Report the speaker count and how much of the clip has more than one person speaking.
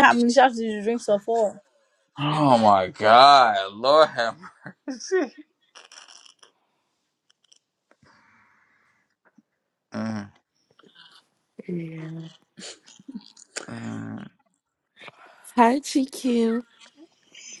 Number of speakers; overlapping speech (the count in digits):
3, no overlap